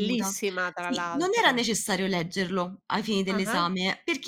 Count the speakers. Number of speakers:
2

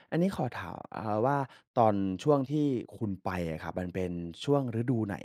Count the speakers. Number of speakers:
1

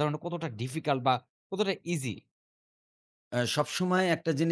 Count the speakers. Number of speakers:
2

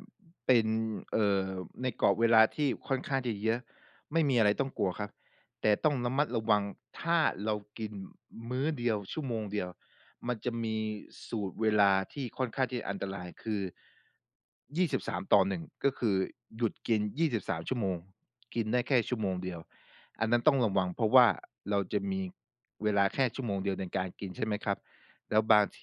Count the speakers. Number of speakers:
1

